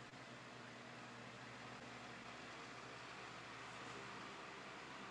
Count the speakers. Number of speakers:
zero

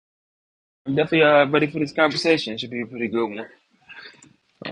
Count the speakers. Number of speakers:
one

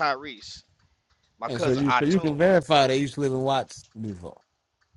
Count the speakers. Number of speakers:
two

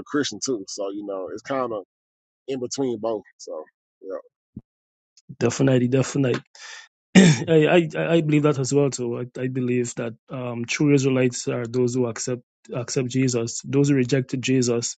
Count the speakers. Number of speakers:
two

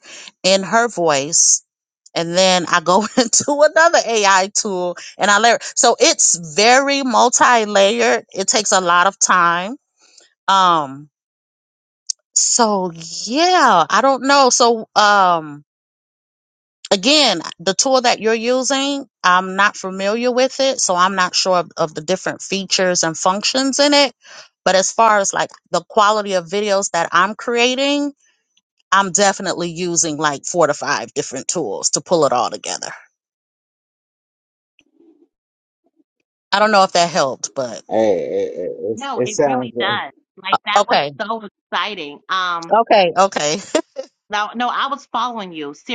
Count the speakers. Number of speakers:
three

